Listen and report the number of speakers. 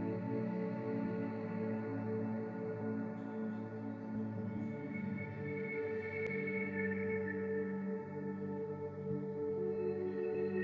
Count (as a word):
zero